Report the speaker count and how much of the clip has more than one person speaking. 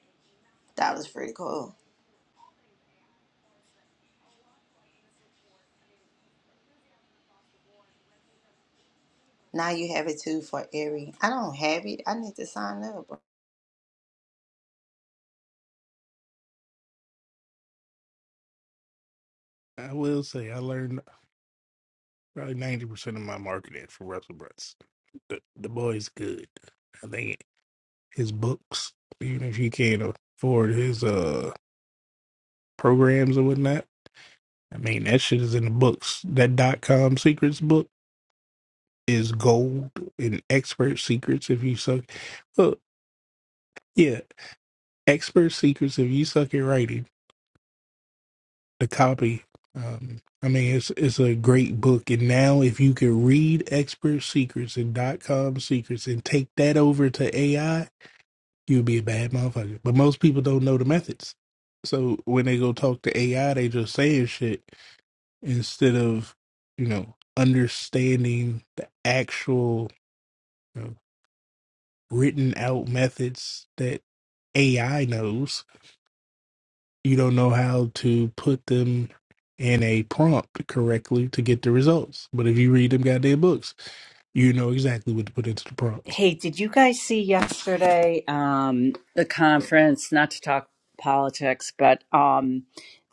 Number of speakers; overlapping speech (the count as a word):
three, under 1%